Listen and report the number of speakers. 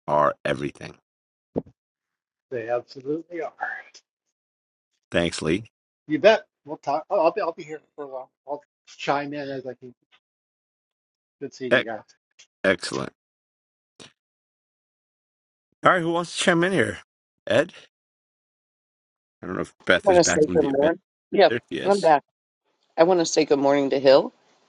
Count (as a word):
three